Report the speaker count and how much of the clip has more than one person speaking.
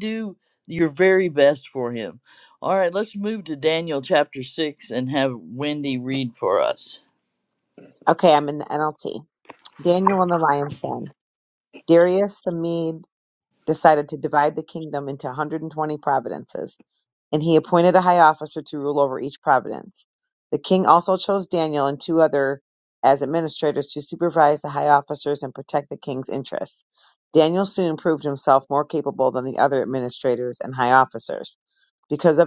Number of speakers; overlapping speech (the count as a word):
two, no overlap